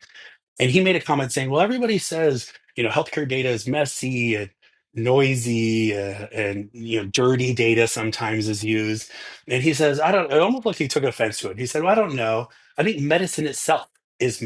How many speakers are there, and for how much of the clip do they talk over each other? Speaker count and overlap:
1, no overlap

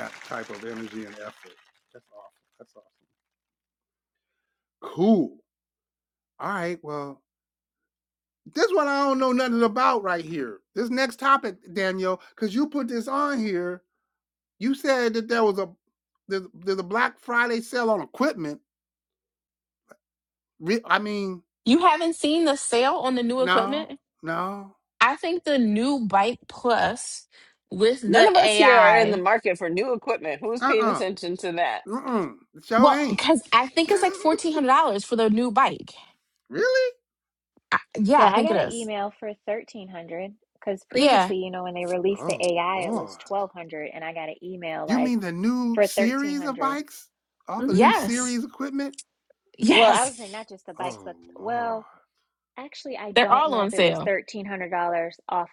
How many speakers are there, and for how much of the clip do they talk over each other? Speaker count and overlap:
4, about 15%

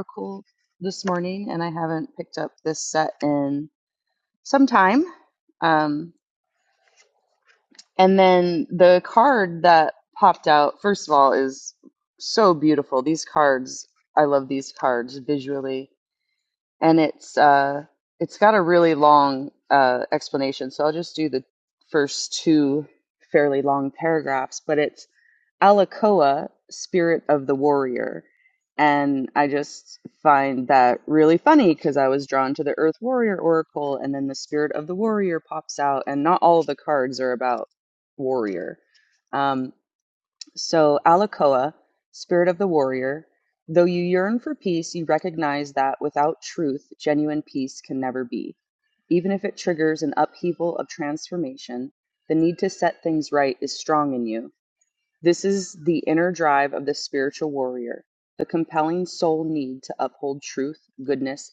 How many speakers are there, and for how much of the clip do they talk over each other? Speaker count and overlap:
1, no overlap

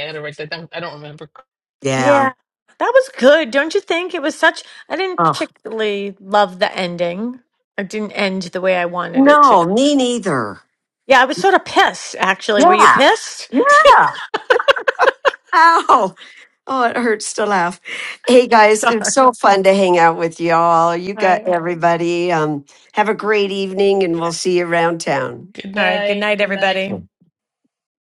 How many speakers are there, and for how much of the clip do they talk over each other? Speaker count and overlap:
3, about 12%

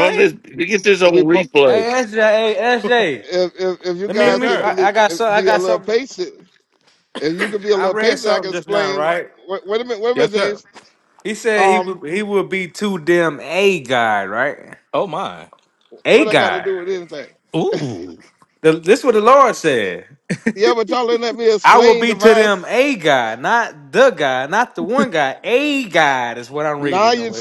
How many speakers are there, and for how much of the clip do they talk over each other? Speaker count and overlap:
4, about 24%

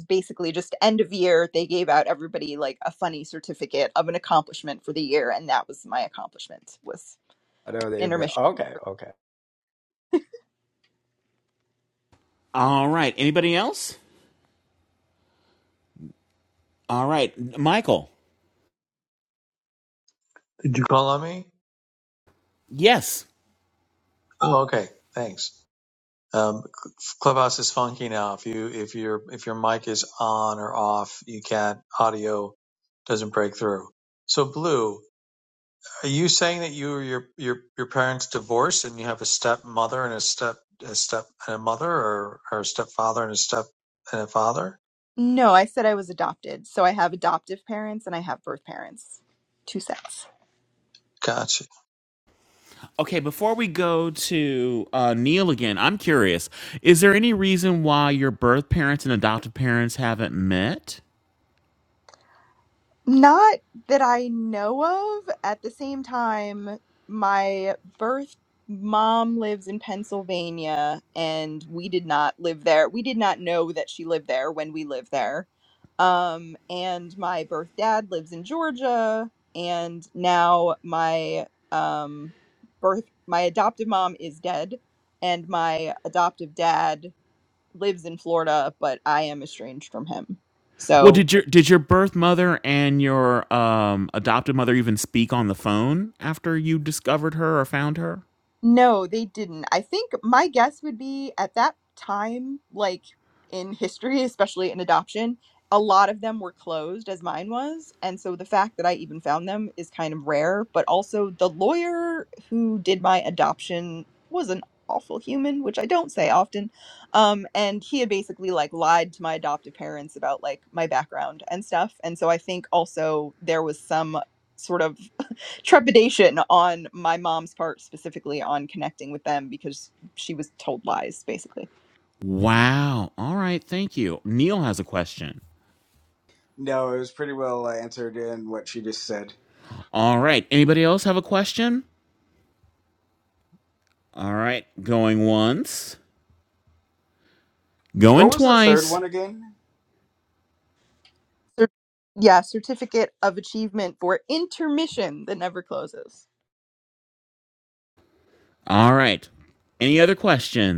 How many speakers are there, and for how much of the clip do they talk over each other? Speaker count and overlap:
5, about 1%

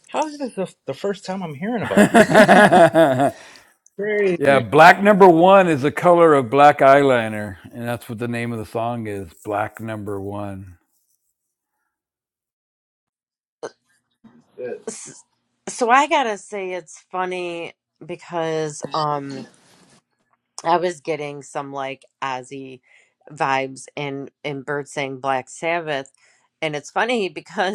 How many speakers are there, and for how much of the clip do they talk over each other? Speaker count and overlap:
3, about 2%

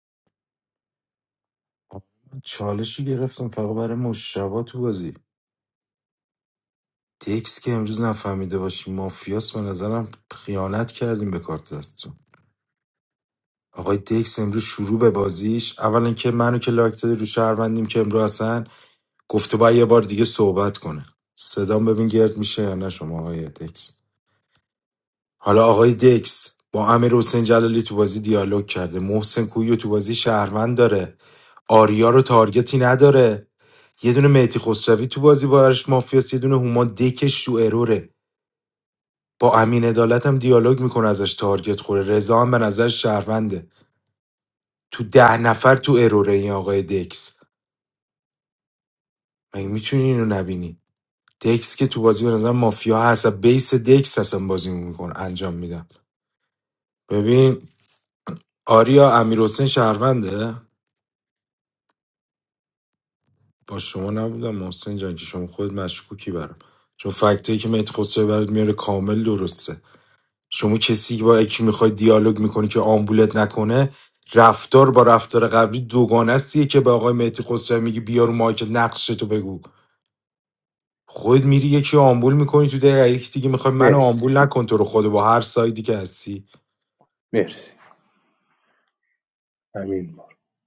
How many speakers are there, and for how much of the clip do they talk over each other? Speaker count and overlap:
2, under 1%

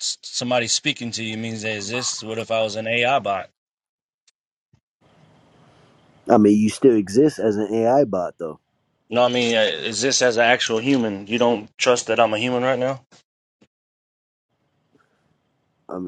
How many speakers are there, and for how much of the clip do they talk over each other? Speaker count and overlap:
2, no overlap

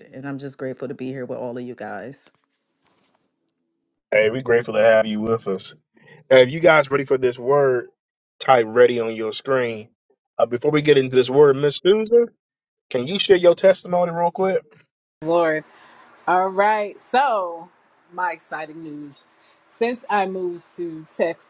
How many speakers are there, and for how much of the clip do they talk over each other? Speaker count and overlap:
3, no overlap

